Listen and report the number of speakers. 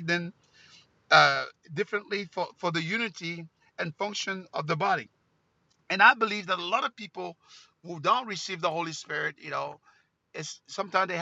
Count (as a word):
one